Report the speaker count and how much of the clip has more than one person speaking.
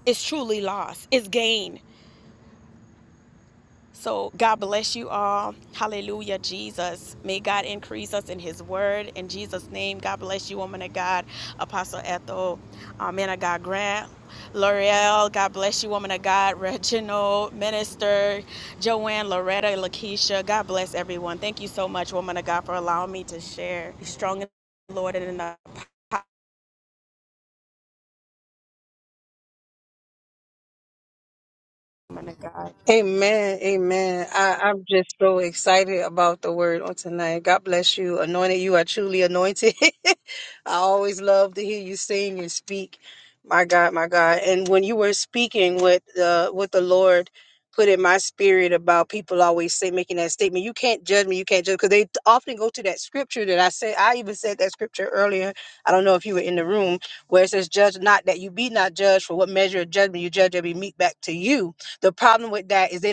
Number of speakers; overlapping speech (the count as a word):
two, no overlap